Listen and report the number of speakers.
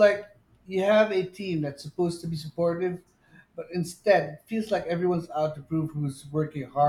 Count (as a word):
one